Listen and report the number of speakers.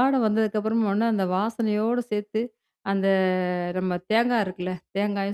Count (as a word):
one